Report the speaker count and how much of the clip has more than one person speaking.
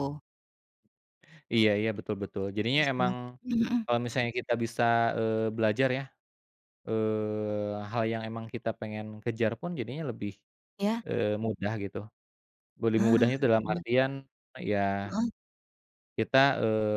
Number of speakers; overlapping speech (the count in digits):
2, about 4%